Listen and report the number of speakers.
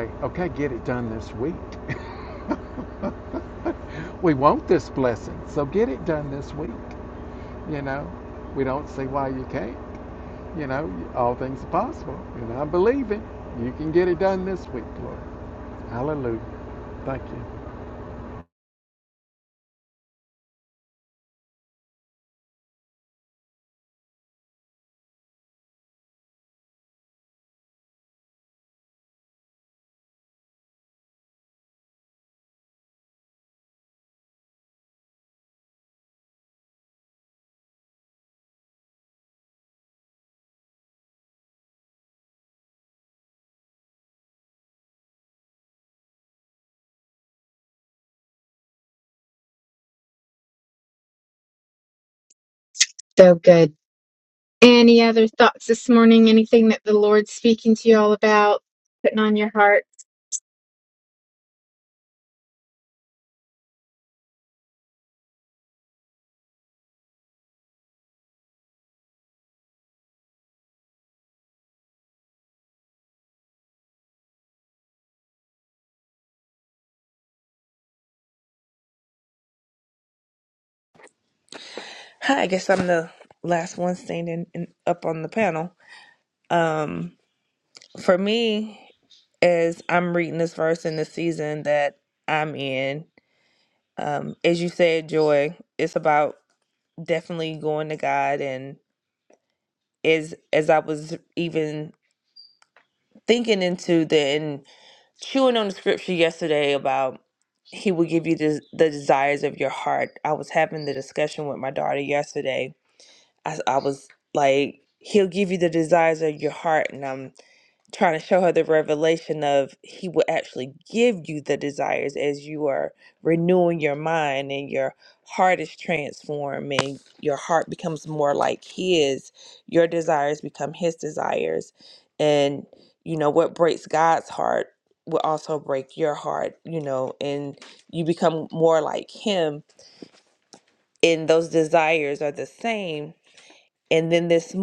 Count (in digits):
3